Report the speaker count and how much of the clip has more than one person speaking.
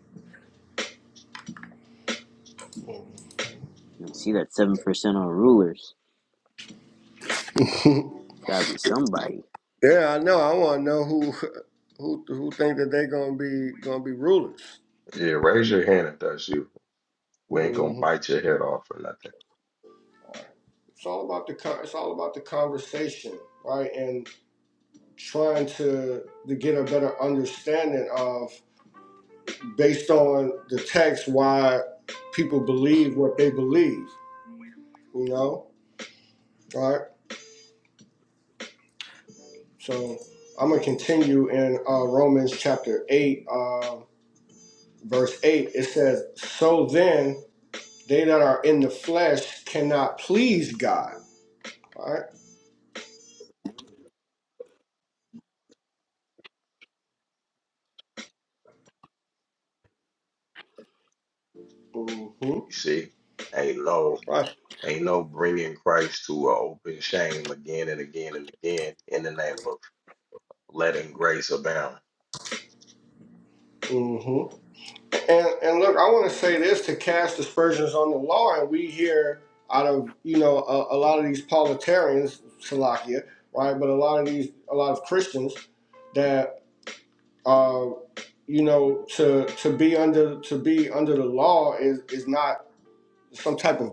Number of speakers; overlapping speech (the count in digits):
3, about 1%